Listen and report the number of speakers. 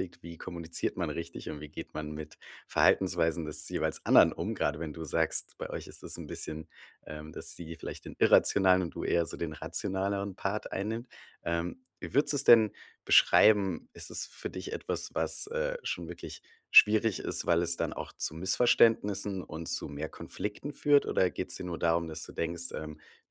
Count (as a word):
one